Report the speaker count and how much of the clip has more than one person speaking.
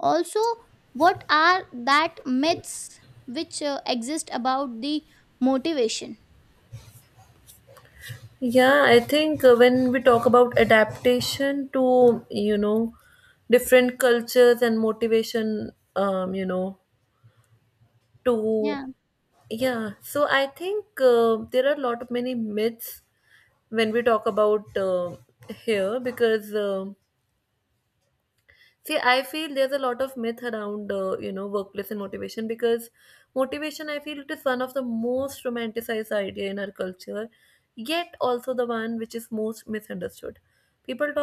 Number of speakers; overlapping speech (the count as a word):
two, under 1%